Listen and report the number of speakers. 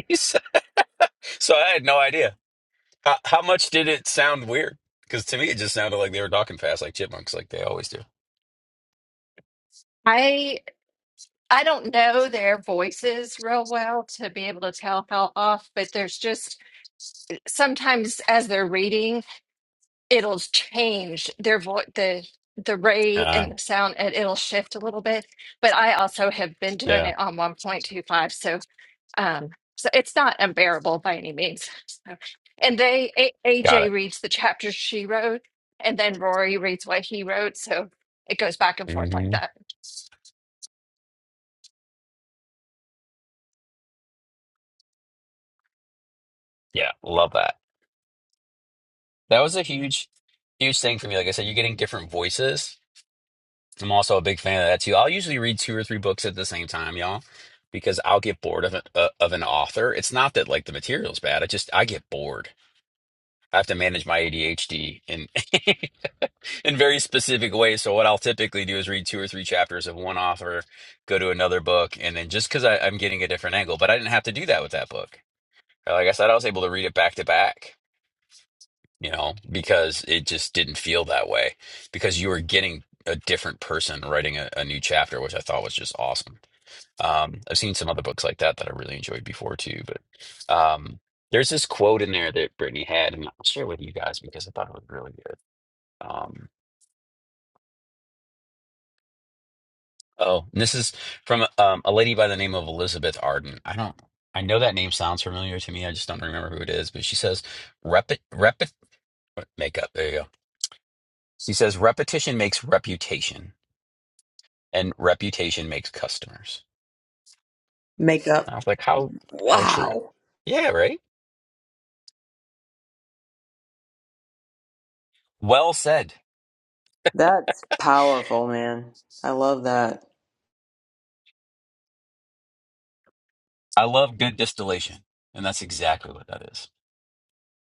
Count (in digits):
3